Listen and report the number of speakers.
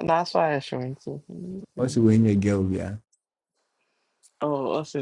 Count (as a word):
two